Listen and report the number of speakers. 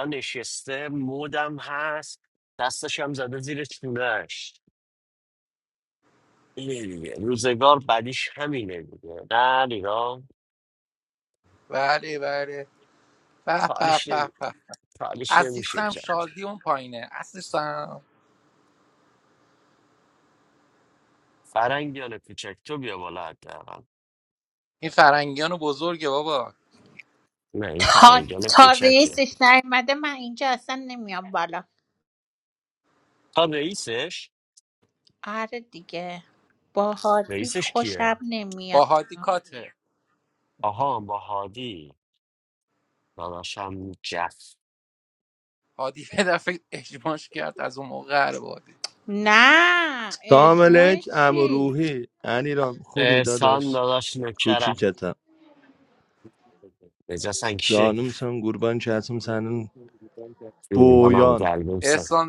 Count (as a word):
four